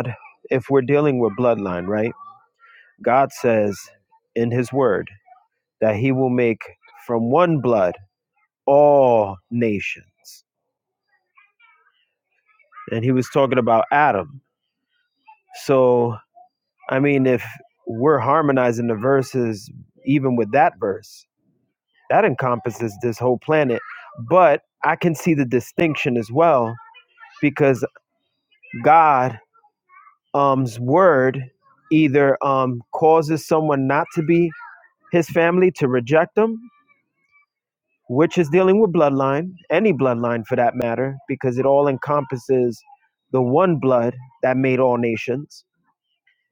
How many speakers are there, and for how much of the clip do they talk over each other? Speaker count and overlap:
1, no overlap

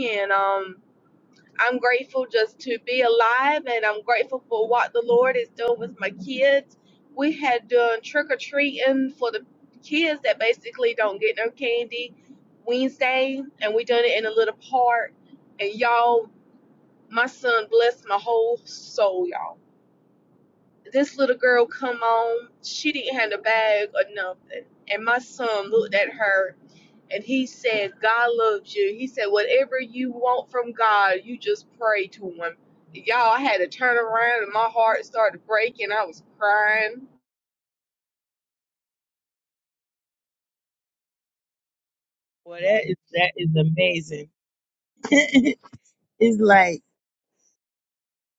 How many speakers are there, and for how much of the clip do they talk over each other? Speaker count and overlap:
2, no overlap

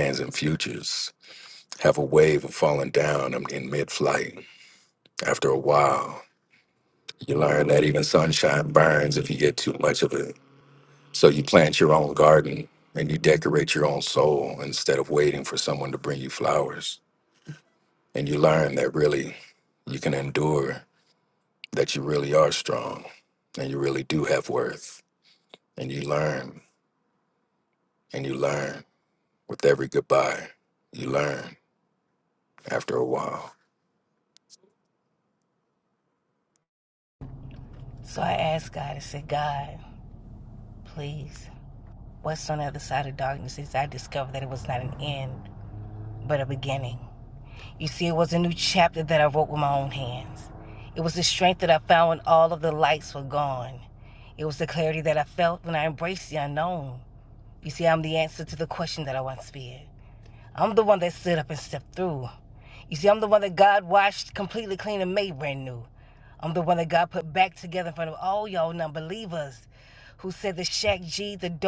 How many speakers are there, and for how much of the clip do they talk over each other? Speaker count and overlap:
2, no overlap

